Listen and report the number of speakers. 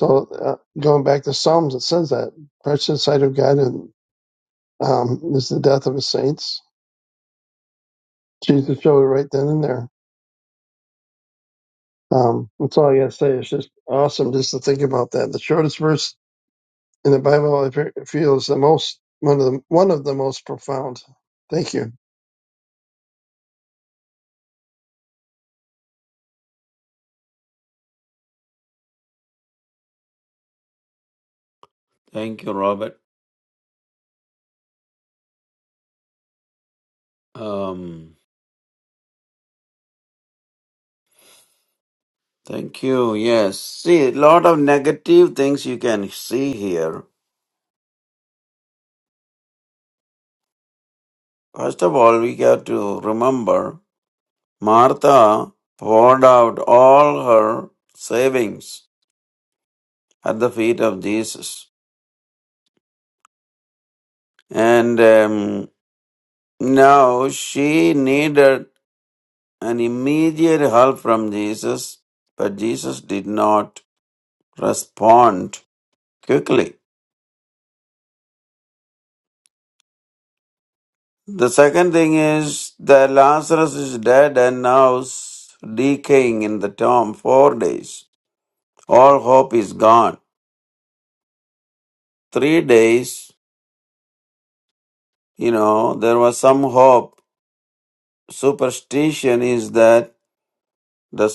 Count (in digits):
2